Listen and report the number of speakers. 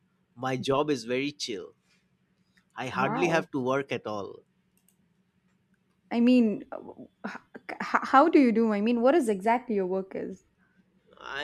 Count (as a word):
two